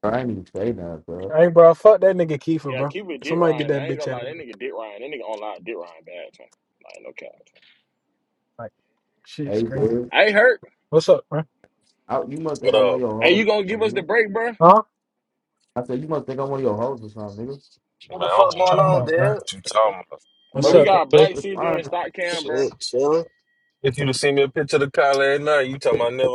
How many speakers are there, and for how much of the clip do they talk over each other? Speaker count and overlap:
five, about 24%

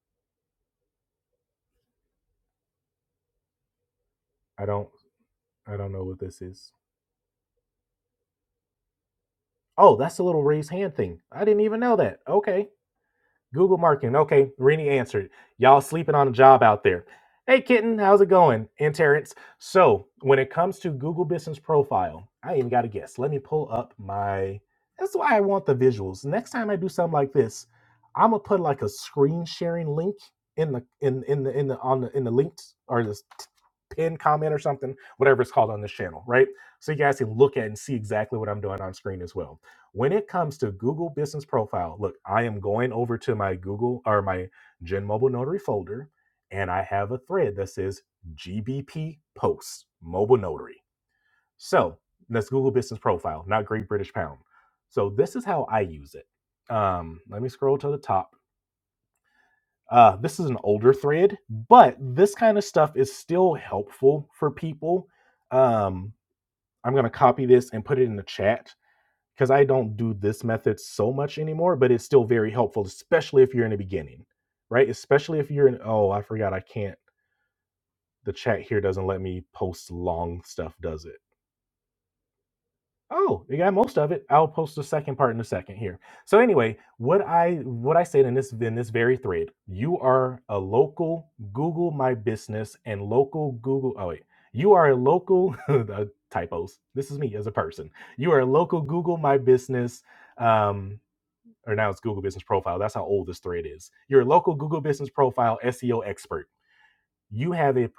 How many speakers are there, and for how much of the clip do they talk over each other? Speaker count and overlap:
one, no overlap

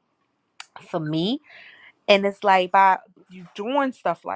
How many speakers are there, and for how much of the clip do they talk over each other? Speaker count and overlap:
one, no overlap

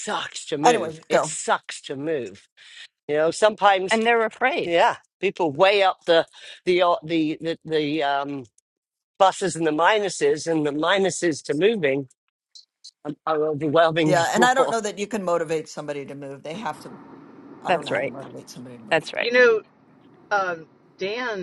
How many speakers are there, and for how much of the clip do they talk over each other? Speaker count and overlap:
four, about 10%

